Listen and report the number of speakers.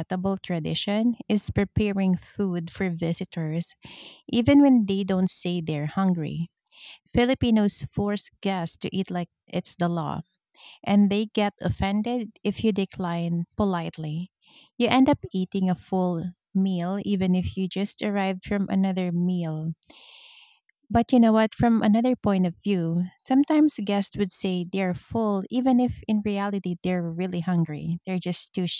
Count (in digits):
1